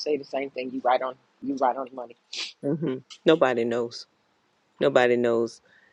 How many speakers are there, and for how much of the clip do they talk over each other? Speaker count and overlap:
two, no overlap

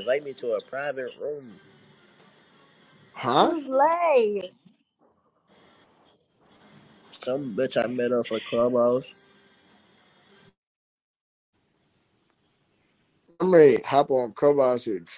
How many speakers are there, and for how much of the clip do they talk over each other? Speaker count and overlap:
three, about 1%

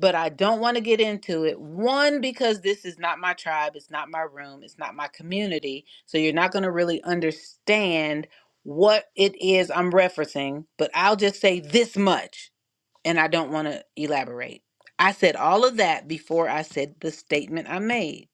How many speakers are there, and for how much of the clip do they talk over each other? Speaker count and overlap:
one, no overlap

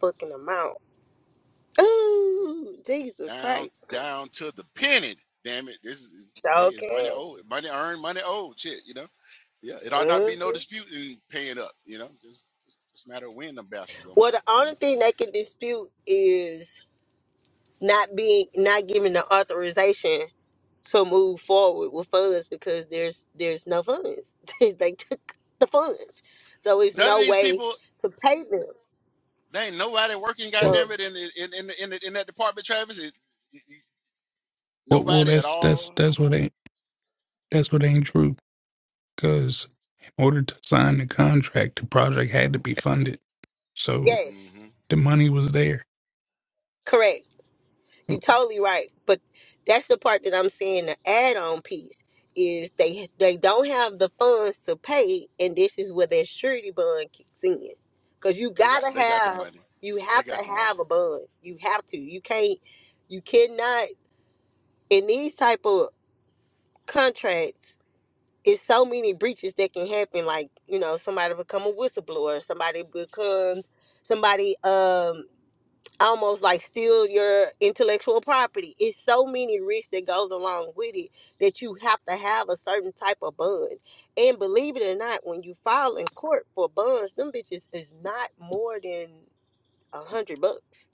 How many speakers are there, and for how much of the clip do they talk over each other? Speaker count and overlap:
three, about 7%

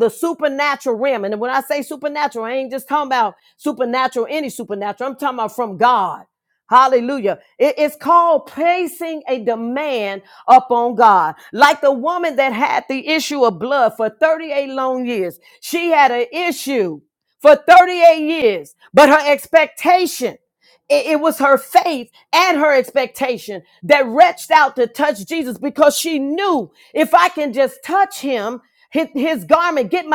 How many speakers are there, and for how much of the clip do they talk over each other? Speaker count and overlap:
one, no overlap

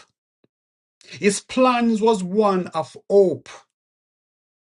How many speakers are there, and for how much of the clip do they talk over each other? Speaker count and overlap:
one, no overlap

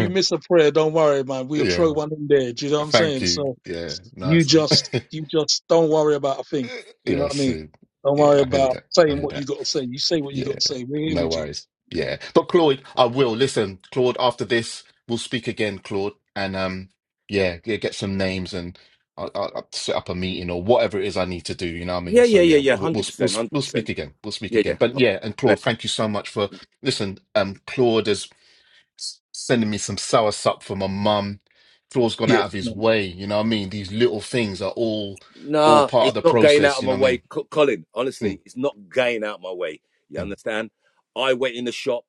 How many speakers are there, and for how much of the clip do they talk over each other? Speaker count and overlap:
three, about 21%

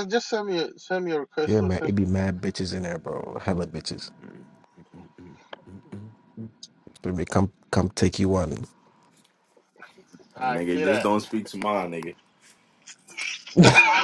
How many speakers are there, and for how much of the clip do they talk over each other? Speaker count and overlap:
three, about 8%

